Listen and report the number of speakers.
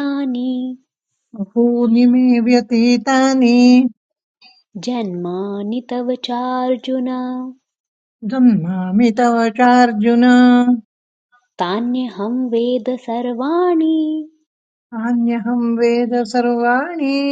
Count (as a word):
two